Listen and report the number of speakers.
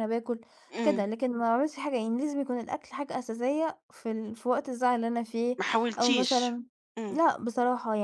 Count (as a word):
two